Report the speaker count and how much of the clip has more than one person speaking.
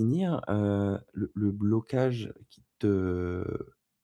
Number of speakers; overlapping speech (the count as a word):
one, no overlap